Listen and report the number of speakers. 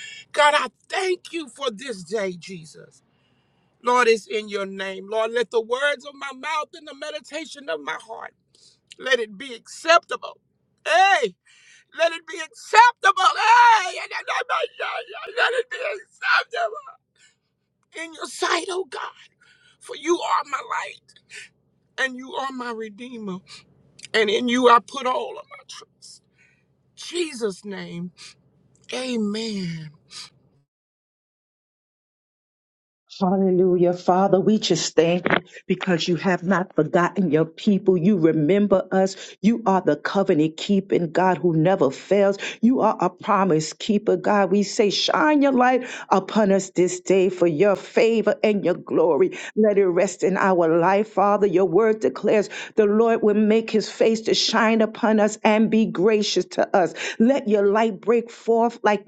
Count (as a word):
two